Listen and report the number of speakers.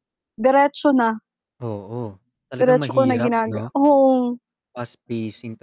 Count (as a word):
two